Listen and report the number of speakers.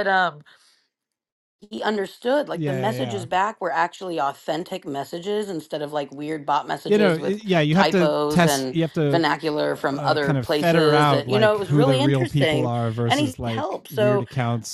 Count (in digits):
2